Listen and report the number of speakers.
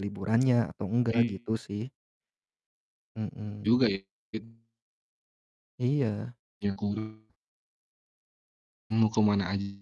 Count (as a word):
two